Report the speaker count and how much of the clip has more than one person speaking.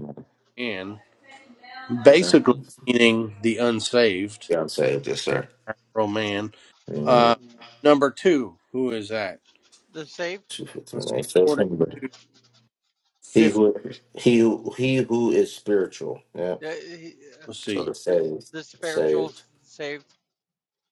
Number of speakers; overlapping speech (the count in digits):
3, about 11%